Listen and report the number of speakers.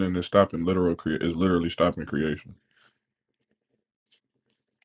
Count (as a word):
one